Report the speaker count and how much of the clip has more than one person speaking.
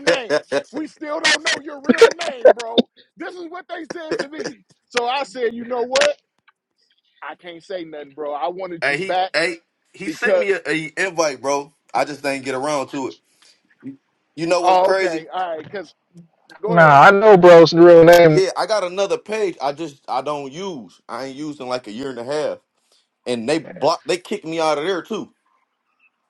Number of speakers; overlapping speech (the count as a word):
three, about 7%